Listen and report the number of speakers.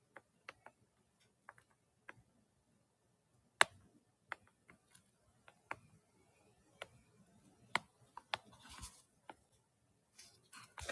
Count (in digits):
0